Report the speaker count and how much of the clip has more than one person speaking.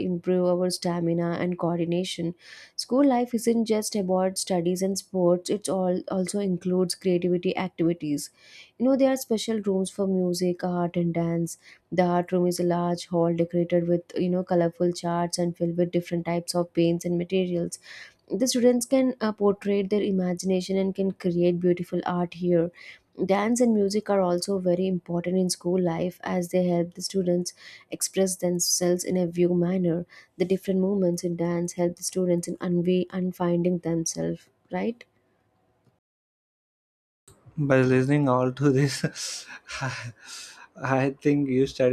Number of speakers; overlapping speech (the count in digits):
2, no overlap